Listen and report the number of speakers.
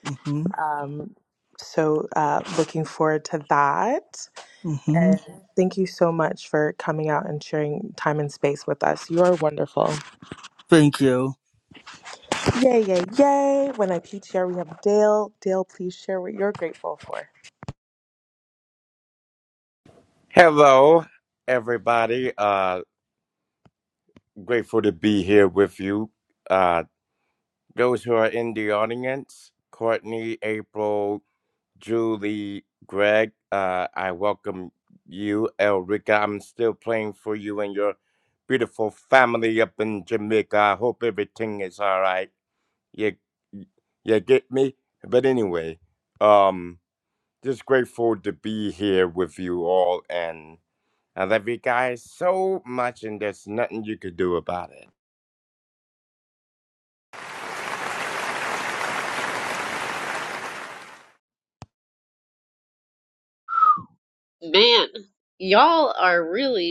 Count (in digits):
4